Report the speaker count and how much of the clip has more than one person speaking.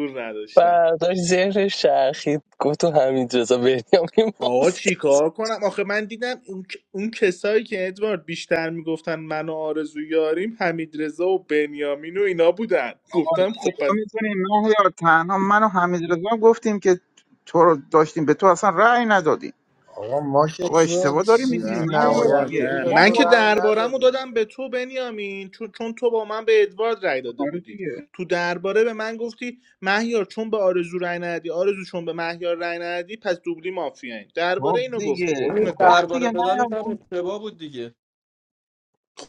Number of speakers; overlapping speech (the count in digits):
5, about 19%